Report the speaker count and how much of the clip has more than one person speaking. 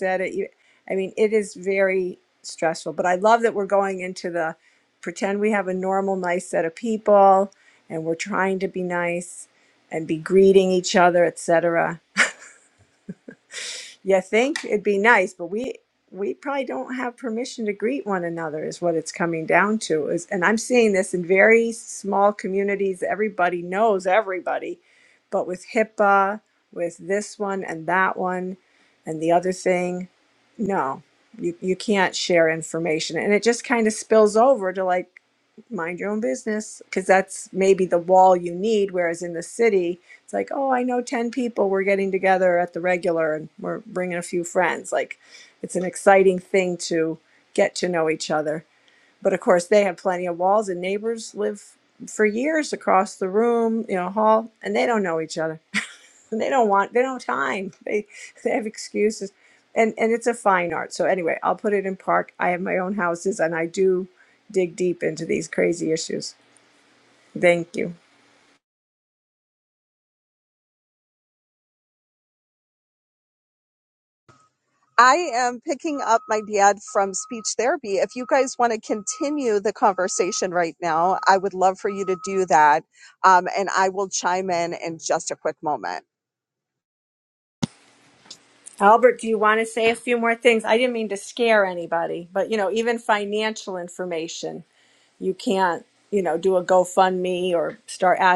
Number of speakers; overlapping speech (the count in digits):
2, no overlap